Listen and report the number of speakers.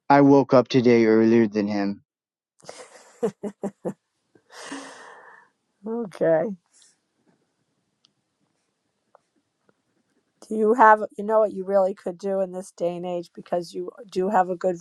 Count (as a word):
two